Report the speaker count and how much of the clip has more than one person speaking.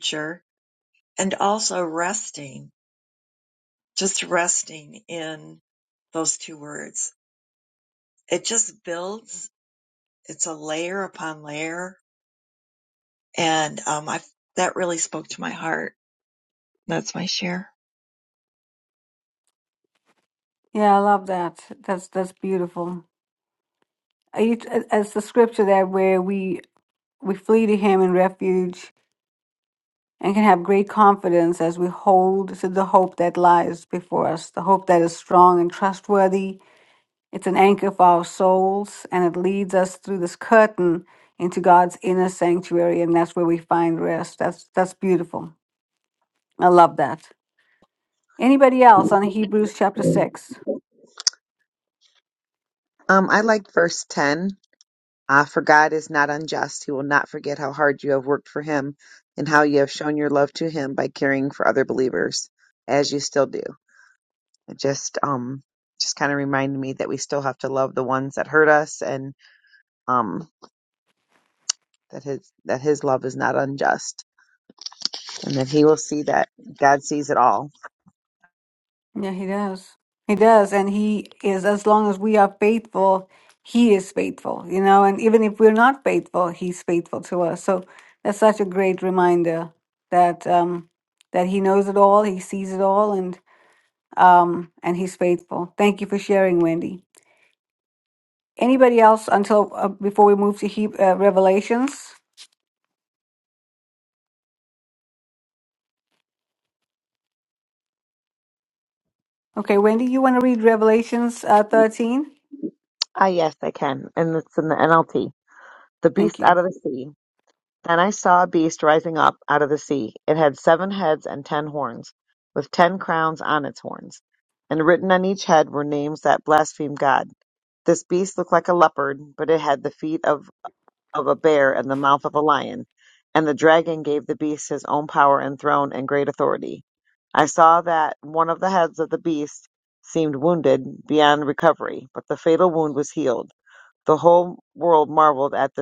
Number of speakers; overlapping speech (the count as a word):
three, under 1%